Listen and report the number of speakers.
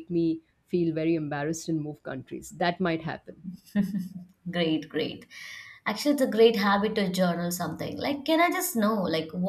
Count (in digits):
2